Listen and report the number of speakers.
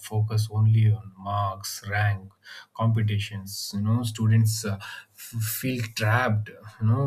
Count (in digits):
1